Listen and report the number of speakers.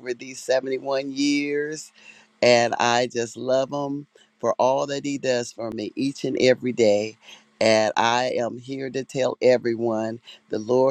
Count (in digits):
1